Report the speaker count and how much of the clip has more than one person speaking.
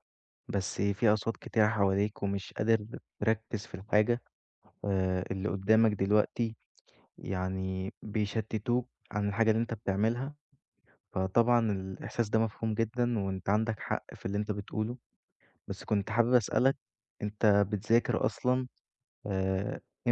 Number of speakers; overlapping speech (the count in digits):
1, no overlap